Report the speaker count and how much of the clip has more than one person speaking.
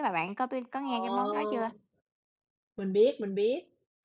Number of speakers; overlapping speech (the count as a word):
two, about 24%